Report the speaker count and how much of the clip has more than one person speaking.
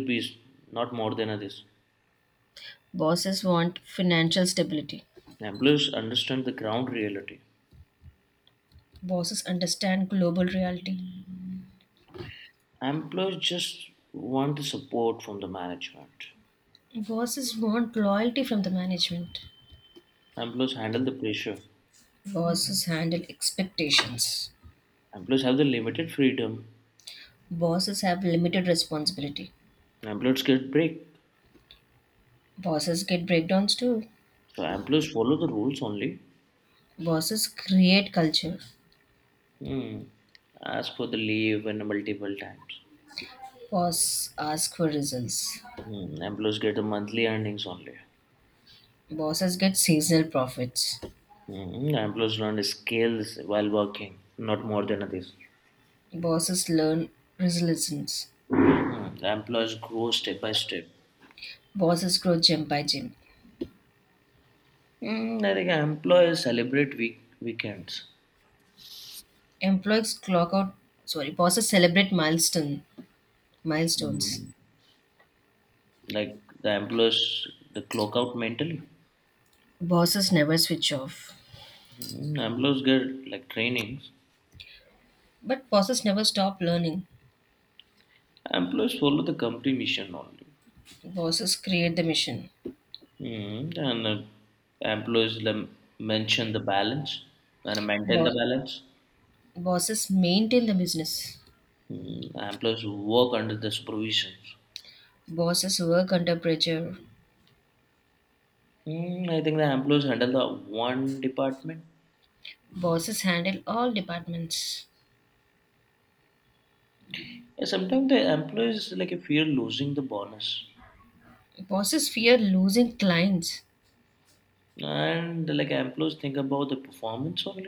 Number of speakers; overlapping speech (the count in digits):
2, about 1%